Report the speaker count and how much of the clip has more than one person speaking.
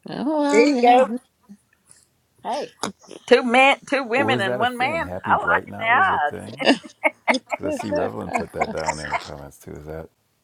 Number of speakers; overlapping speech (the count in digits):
3, about 35%